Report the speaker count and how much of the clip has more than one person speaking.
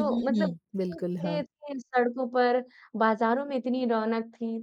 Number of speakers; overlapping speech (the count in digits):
2, about 16%